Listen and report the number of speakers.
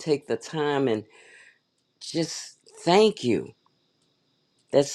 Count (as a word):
one